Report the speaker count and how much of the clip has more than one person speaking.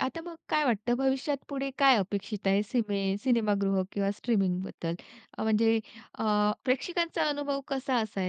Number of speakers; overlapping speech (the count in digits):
1, no overlap